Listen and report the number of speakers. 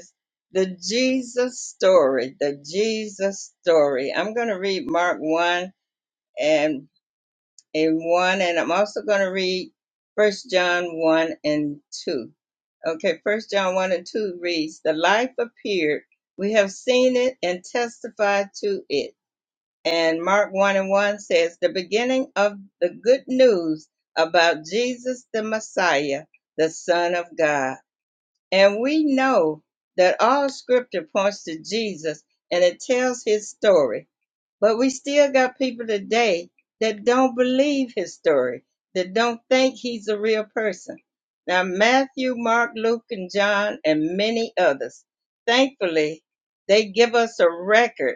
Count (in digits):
1